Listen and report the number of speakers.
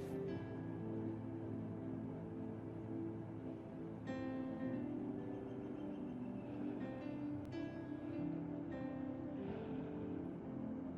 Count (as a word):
zero